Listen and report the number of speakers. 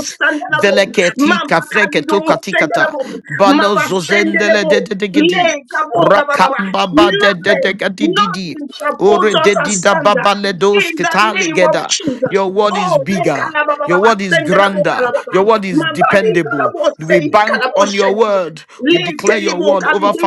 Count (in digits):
2